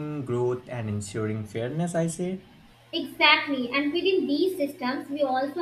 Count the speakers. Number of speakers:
2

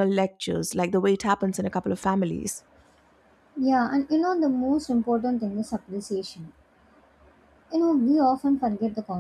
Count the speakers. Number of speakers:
2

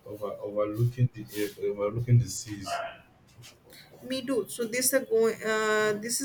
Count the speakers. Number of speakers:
2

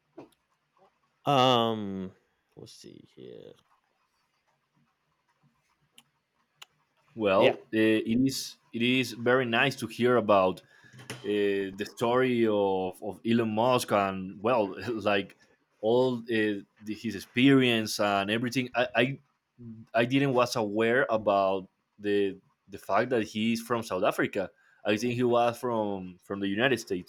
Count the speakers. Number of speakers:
2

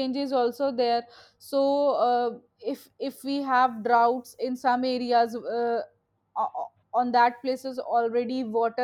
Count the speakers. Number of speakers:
1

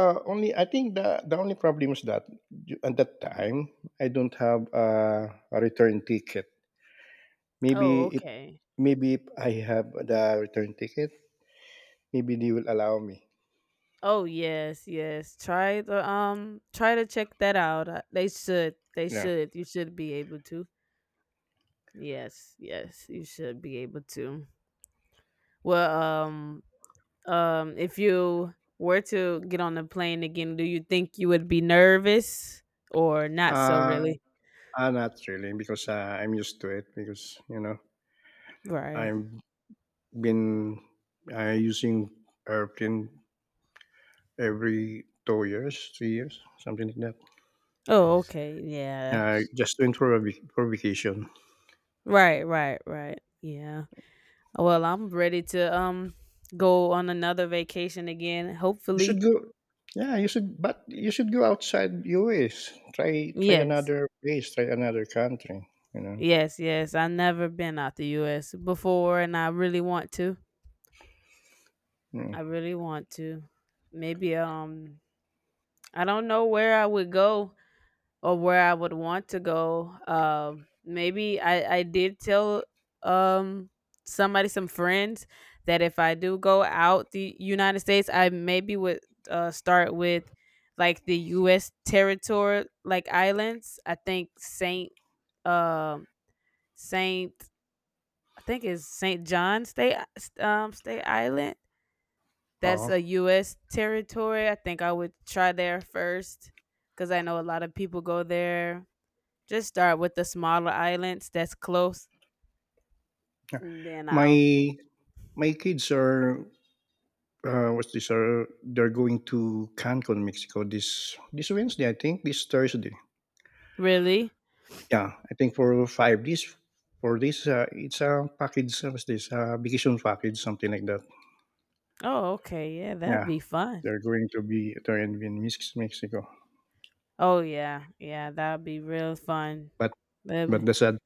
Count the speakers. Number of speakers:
2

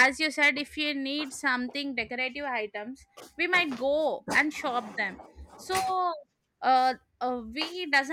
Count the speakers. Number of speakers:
1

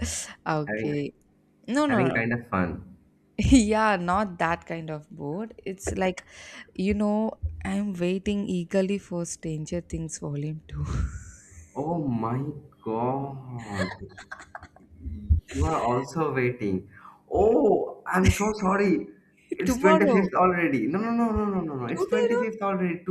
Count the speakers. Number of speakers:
2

